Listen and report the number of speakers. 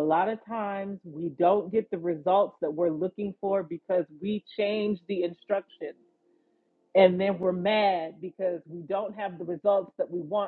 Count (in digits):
1